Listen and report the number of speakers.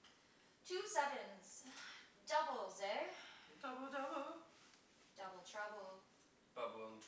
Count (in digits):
2